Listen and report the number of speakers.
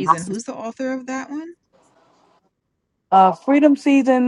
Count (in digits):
2